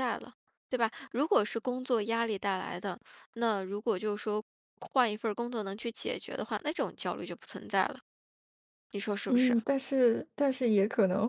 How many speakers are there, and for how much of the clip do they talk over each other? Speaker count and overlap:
2, about 3%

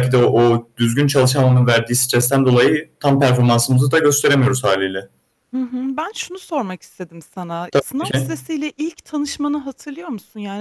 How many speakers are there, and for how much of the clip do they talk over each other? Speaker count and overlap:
2, about 3%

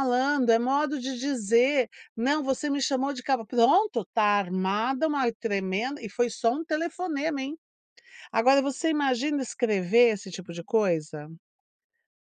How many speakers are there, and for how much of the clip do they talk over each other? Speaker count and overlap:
1, no overlap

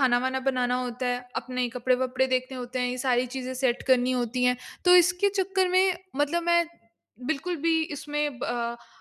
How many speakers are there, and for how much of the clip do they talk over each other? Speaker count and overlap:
1, no overlap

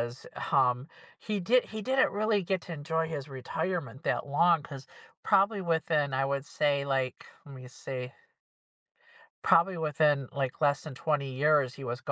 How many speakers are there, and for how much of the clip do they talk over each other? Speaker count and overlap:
1, no overlap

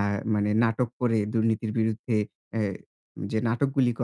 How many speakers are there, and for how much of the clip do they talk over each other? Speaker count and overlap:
1, no overlap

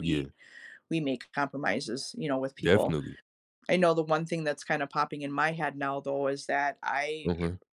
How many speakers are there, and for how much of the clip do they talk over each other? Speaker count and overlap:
2, about 9%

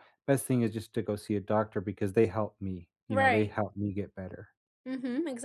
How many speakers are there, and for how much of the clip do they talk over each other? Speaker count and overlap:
2, about 8%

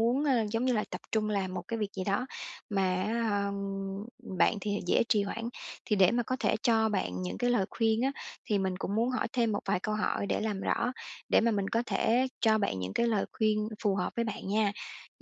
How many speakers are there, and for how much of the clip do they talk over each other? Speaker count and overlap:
1, no overlap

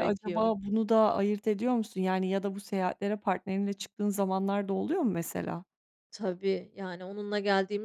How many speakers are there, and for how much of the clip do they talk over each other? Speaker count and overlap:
2, about 6%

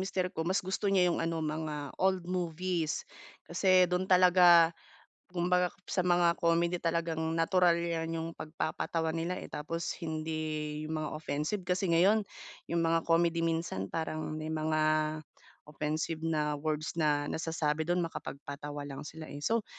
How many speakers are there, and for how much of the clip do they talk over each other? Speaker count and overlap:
1, no overlap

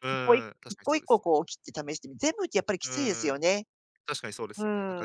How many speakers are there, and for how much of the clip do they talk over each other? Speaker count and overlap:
2, about 40%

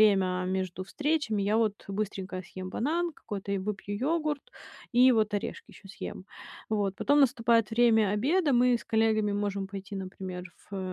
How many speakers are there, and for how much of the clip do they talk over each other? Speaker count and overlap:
1, no overlap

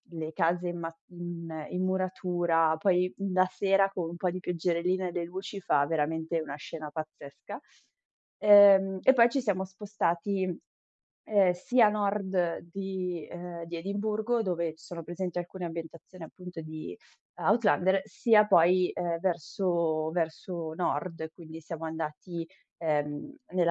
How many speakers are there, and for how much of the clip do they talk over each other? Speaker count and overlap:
1, no overlap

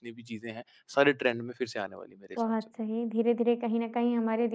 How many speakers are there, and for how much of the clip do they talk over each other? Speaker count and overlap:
2, about 7%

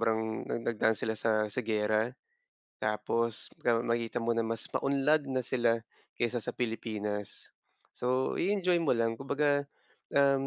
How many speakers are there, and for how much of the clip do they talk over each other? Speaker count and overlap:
1, no overlap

